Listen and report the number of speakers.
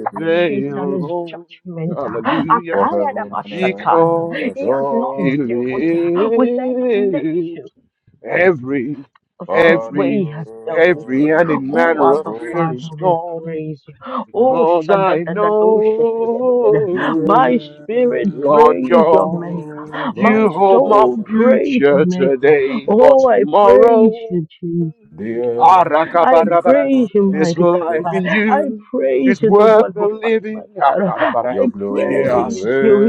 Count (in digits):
3